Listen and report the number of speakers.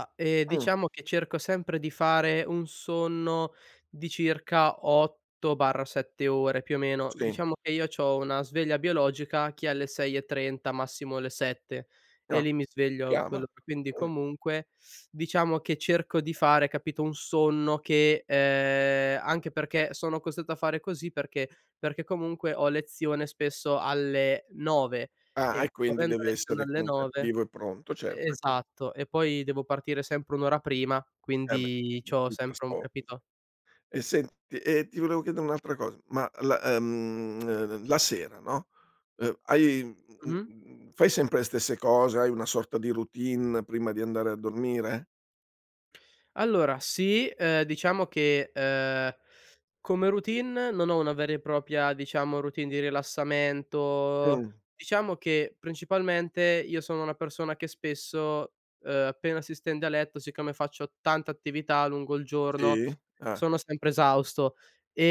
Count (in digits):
2